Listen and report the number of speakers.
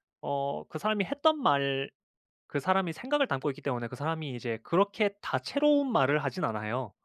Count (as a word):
one